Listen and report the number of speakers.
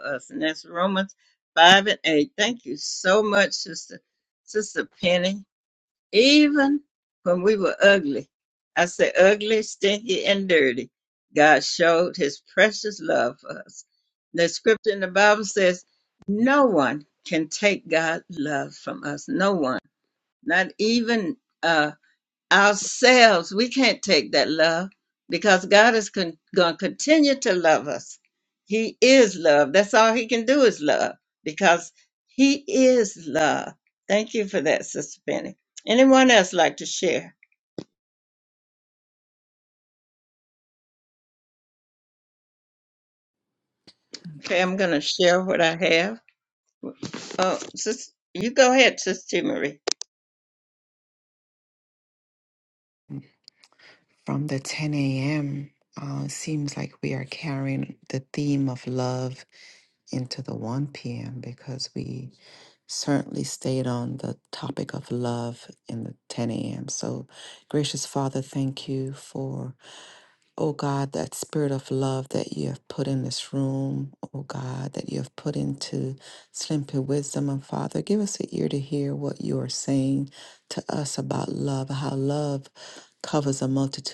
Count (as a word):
two